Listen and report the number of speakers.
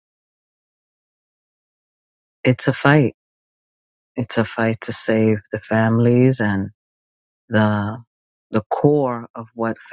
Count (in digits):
1